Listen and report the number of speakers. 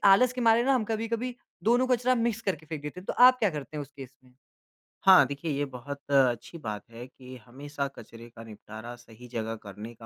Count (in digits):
2